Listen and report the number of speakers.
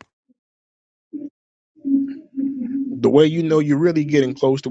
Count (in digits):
1